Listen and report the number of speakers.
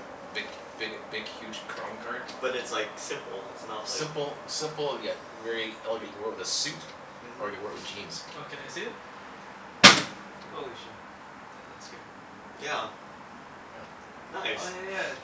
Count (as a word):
three